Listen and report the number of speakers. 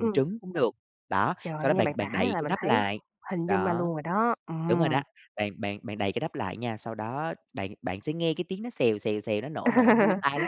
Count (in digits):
2